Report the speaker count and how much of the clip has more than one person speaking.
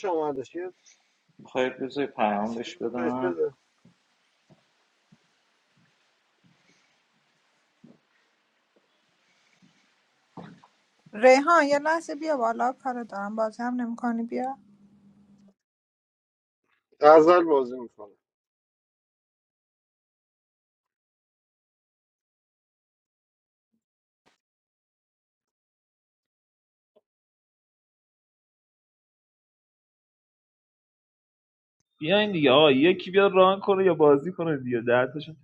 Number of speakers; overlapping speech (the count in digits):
4, about 2%